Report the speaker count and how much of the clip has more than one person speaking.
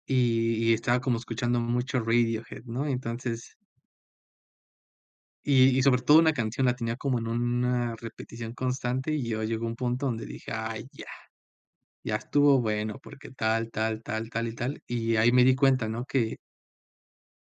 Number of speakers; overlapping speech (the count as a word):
one, no overlap